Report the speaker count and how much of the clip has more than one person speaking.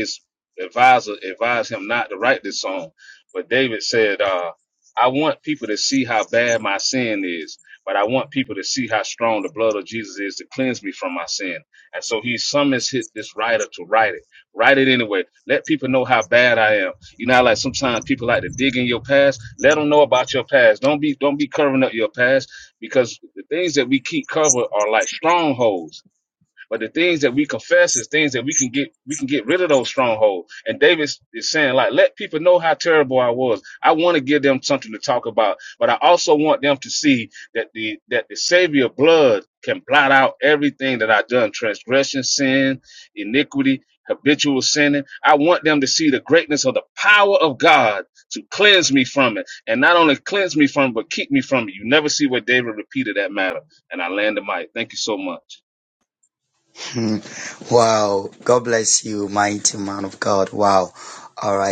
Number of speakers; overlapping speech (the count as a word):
two, no overlap